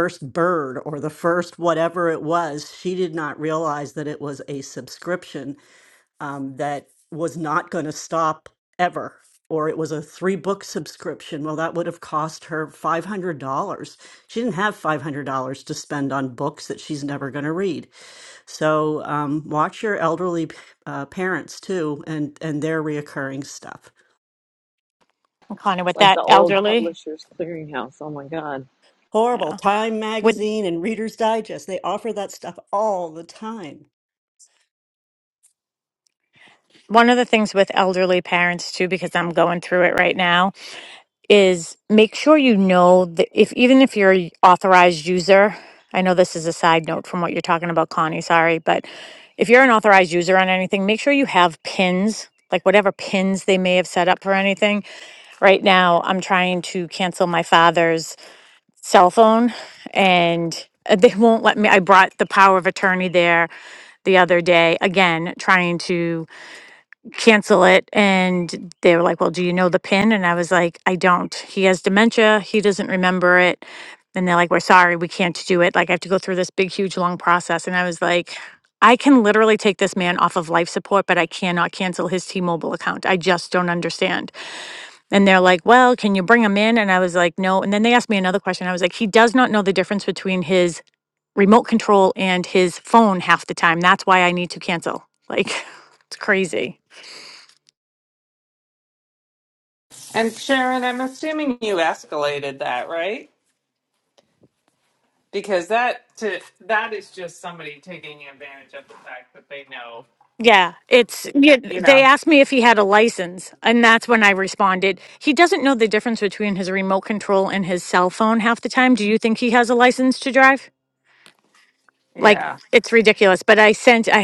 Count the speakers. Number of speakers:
4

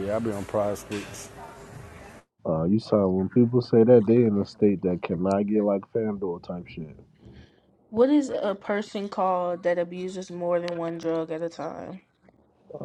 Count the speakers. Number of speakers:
3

